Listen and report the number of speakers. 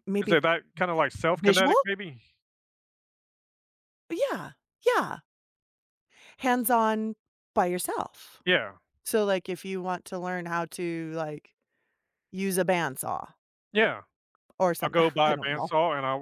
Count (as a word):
two